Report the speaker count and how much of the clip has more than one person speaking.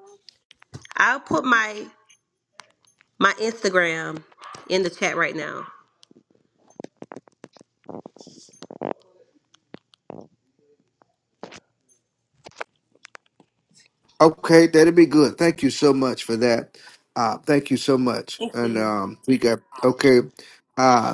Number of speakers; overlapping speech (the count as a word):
two, about 2%